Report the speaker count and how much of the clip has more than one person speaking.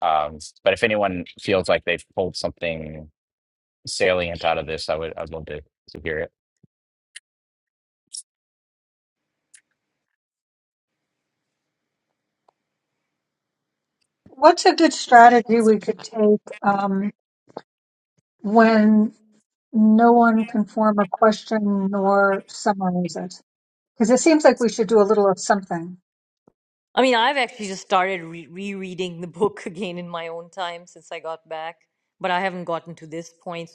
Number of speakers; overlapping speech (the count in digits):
3, no overlap